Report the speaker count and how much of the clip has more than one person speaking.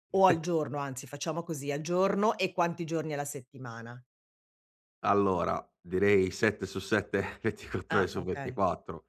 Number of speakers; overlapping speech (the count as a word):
two, about 7%